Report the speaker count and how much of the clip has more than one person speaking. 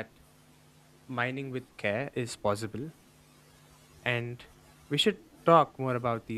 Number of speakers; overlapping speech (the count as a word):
one, no overlap